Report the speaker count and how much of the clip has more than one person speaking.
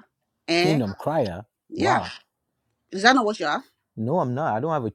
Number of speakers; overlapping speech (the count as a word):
two, about 10%